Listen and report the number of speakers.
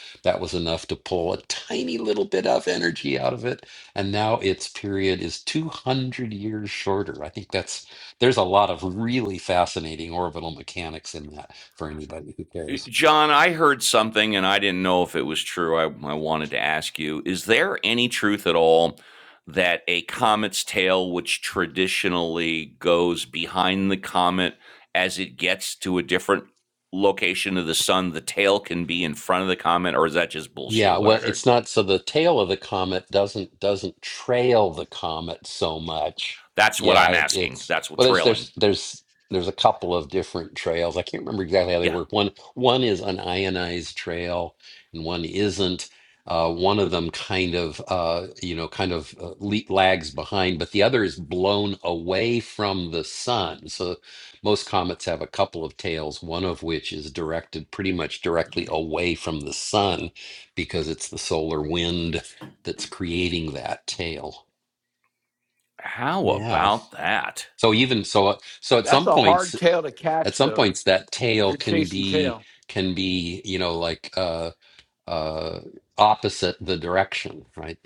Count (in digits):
3